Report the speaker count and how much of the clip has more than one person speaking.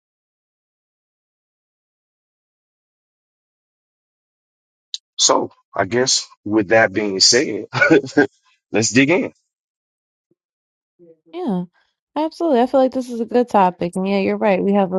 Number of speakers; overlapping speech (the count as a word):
two, no overlap